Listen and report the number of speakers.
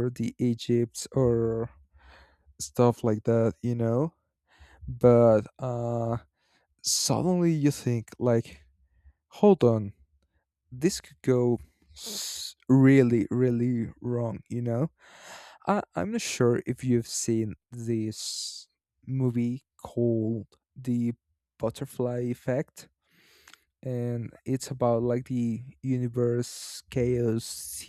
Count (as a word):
one